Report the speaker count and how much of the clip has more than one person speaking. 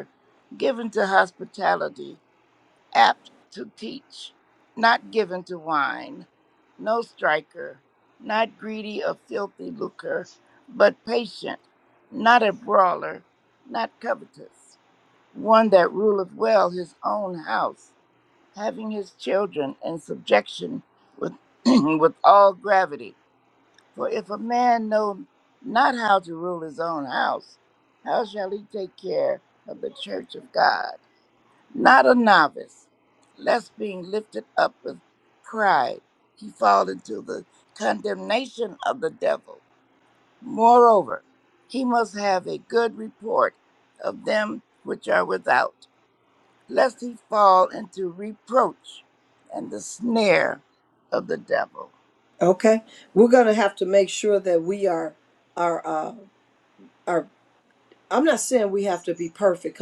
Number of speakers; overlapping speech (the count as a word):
two, no overlap